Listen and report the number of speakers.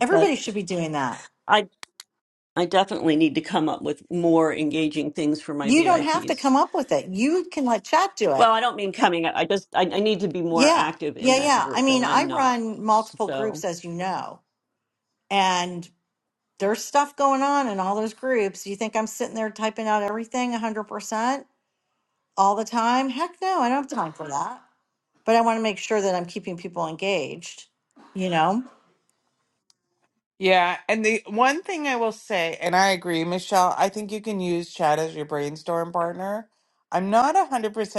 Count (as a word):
three